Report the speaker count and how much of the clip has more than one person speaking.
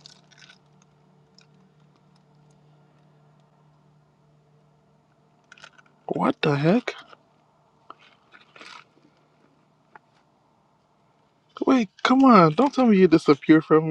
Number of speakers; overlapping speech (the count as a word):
one, no overlap